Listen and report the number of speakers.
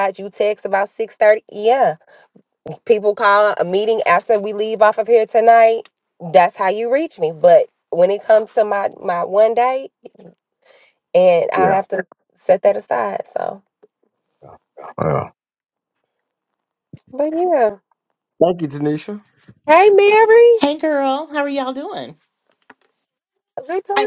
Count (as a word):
three